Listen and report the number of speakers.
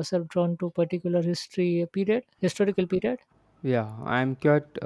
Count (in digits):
2